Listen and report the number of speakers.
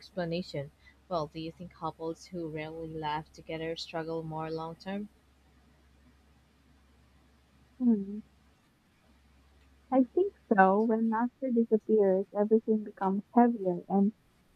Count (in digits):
2